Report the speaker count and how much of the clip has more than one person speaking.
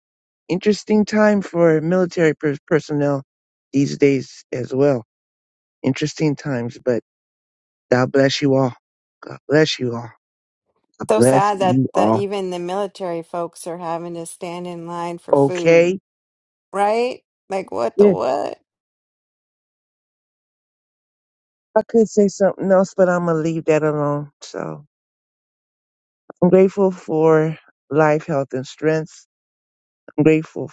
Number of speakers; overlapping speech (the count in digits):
2, about 6%